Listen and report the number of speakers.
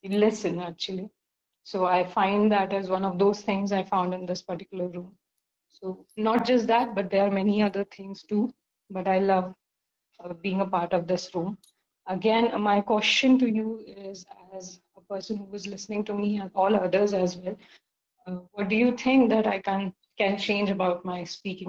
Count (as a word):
one